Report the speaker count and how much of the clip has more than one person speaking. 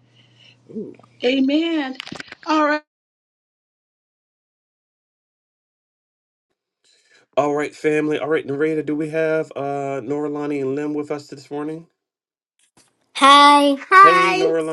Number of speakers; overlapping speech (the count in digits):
3, about 3%